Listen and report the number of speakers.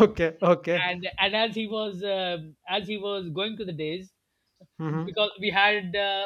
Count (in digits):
2